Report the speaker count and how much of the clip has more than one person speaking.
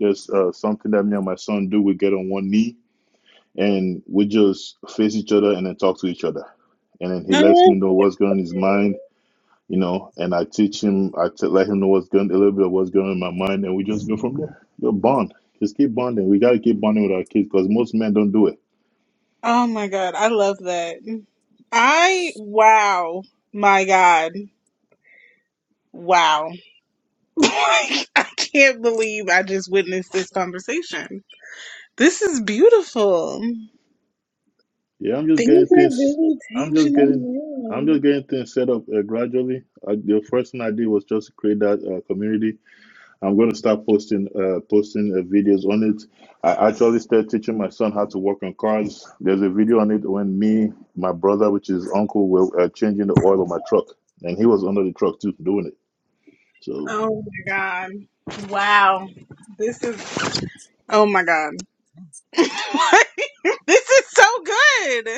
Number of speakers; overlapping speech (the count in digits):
2, about 3%